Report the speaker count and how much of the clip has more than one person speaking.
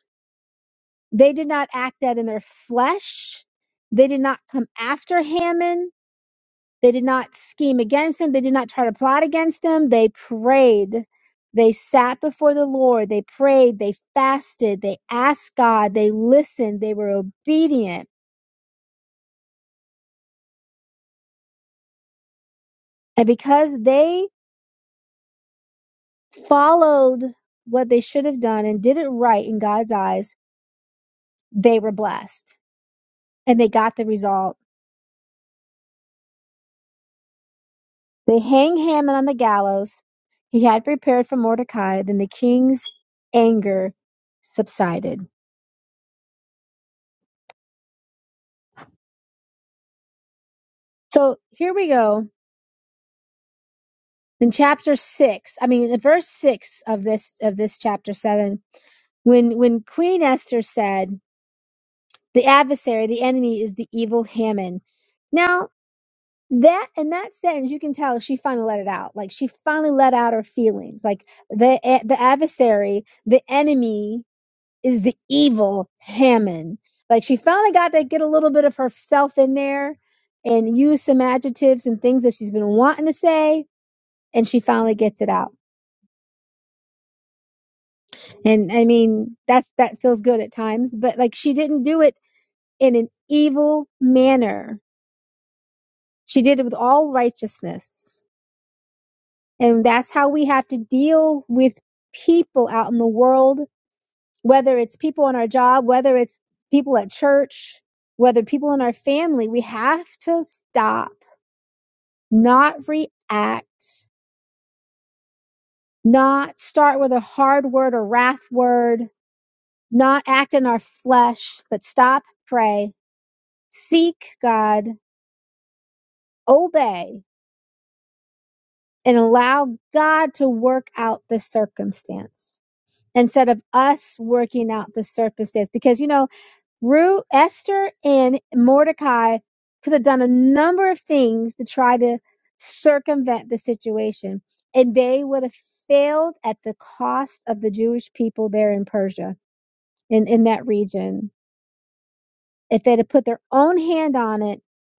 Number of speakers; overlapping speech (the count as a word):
one, no overlap